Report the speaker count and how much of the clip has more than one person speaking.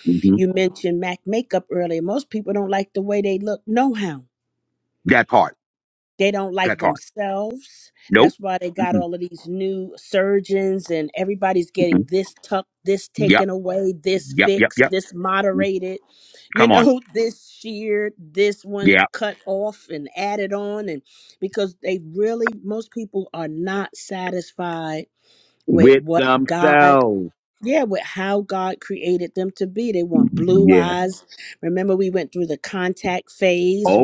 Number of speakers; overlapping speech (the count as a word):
two, about 14%